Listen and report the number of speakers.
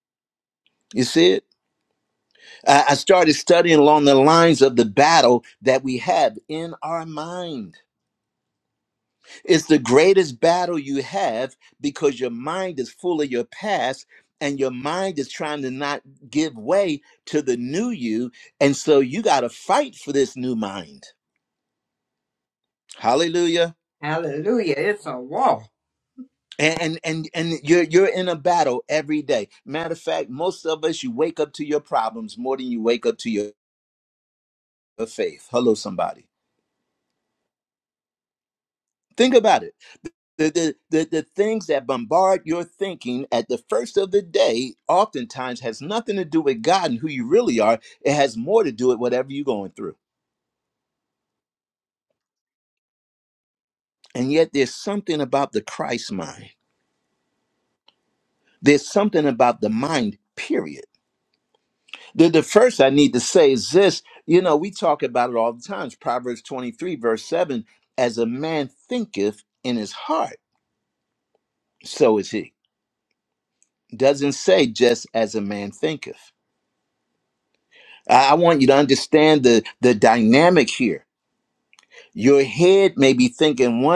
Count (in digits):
2